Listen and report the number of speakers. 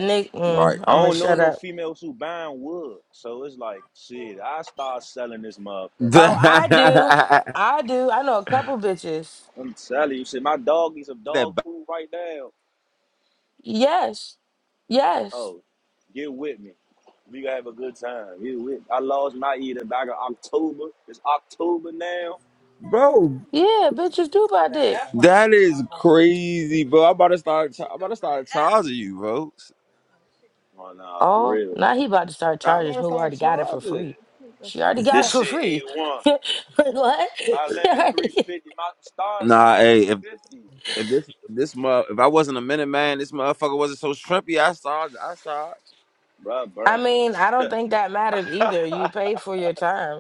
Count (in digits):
3